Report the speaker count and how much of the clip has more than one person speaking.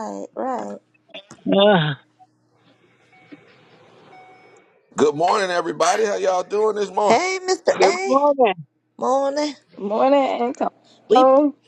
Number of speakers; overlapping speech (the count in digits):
4, about 7%